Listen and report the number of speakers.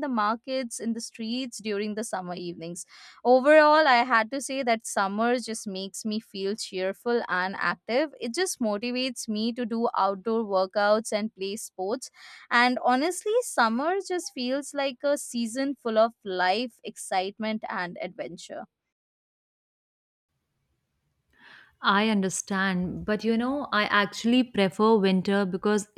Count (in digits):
2